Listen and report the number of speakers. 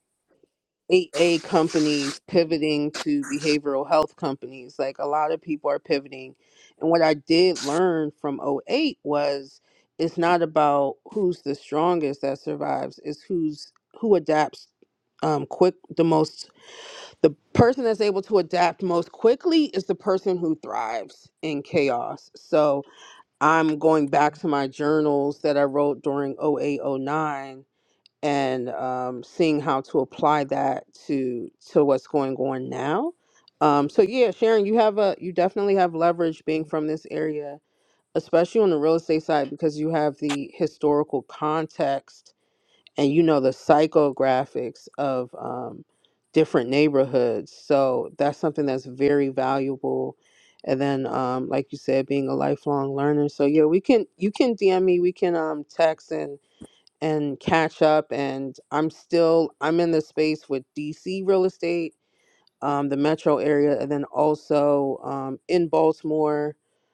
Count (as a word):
one